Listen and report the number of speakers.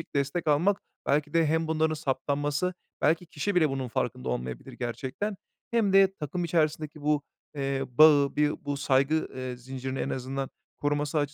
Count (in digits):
1